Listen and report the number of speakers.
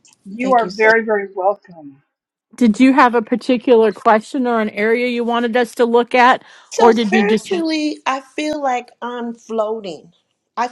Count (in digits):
3